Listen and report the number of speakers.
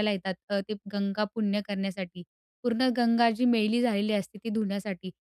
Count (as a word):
one